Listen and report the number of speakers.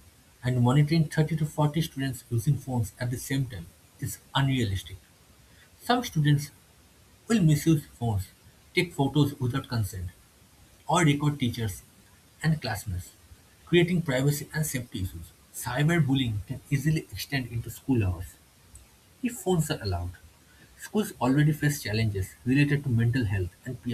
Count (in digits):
1